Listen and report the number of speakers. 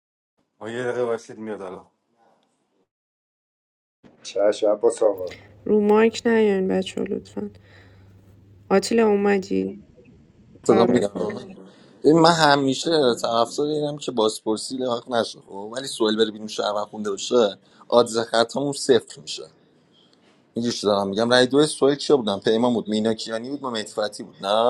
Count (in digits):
4